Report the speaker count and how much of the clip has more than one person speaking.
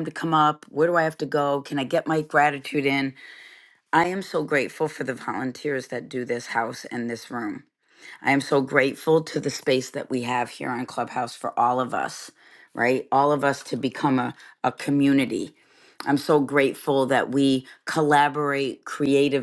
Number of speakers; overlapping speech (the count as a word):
one, no overlap